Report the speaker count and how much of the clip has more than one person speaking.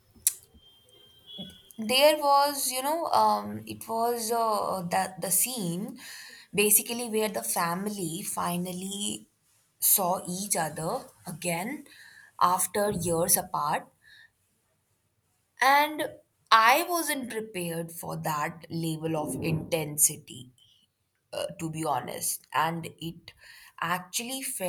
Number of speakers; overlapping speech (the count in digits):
1, no overlap